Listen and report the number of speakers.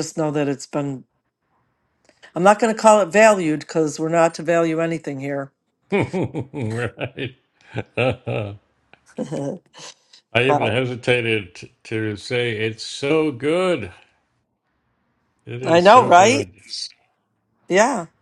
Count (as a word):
two